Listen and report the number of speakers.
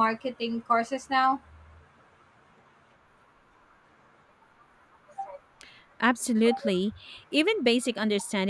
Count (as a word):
two